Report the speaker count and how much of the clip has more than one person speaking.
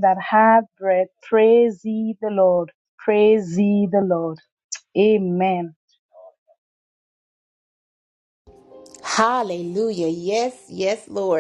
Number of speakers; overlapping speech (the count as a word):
two, no overlap